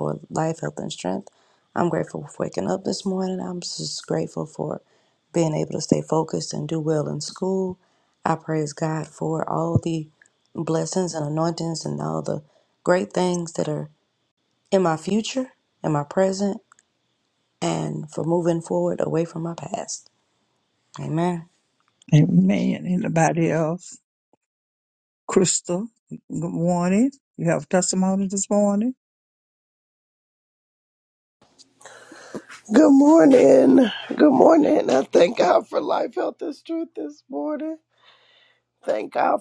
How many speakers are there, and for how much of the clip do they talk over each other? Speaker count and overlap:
3, no overlap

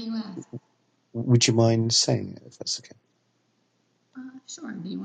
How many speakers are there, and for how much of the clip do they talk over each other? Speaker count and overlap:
2, no overlap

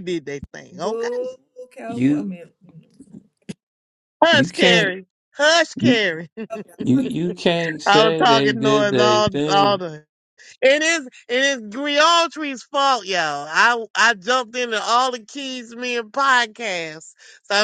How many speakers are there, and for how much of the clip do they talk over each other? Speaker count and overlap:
3, about 21%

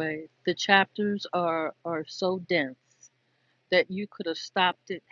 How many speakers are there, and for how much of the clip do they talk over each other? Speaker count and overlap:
1, no overlap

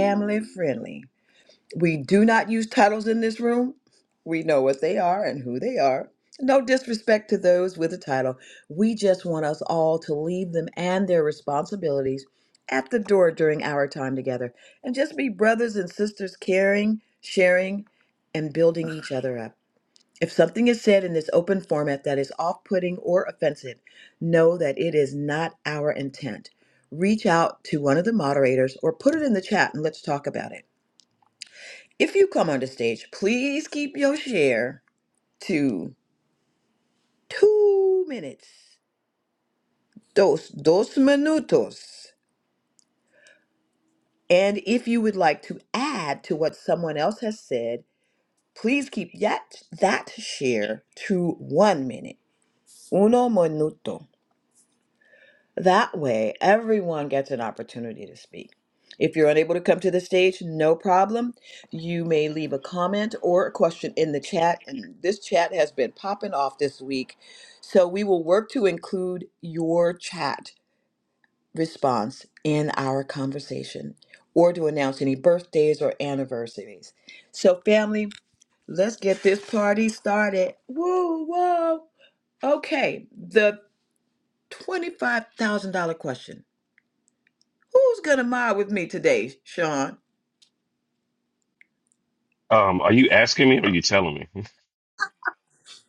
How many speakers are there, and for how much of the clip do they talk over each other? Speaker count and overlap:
2, no overlap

